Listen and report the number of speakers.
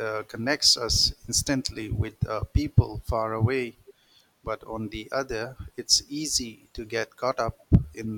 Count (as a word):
one